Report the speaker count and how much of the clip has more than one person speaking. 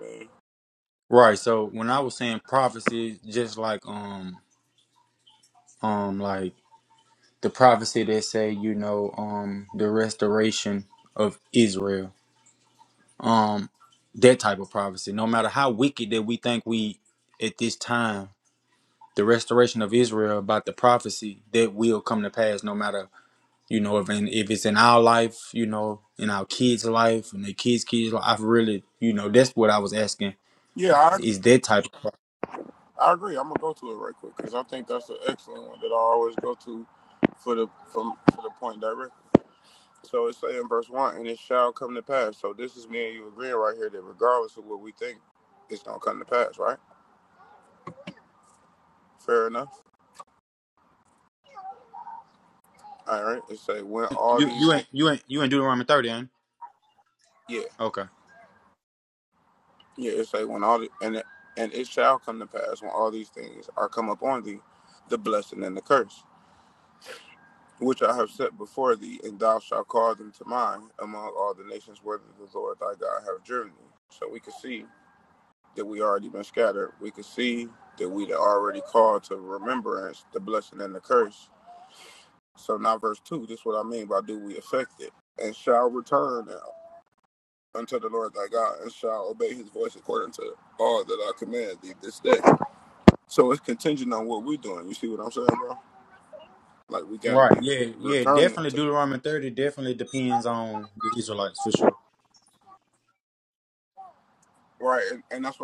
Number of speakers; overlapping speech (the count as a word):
two, about 2%